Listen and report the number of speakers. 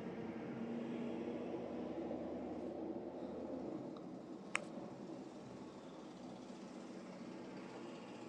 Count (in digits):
0